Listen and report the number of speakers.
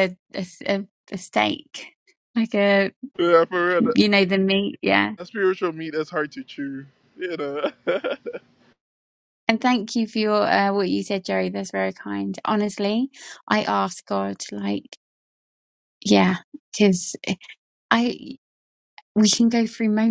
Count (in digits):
2